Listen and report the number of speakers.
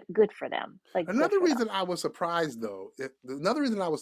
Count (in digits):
2